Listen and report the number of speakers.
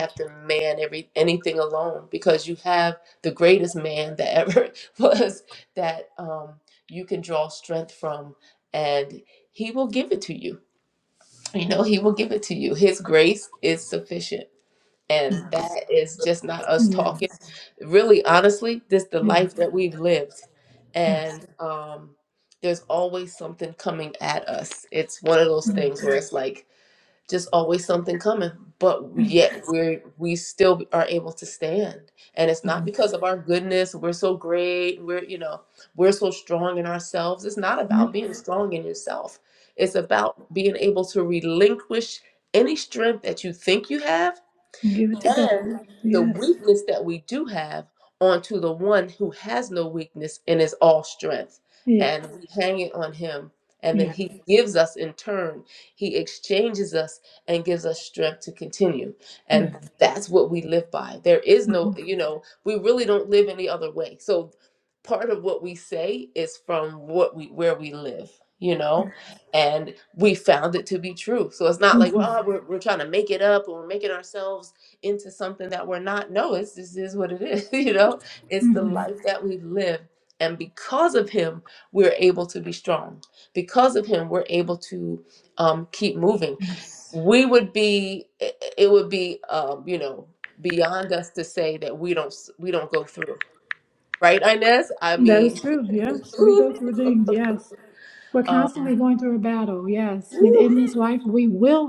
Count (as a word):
two